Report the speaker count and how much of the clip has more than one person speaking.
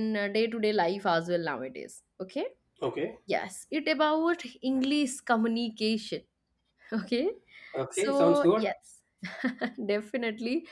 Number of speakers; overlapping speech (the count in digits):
2, about 6%